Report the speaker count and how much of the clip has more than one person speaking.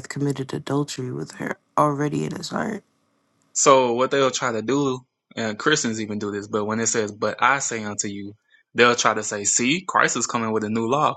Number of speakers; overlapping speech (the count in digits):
2, no overlap